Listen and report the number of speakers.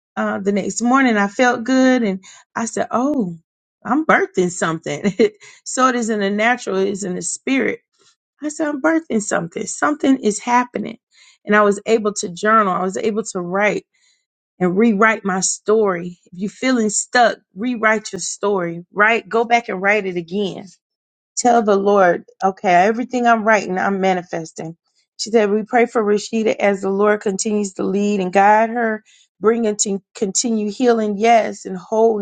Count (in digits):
1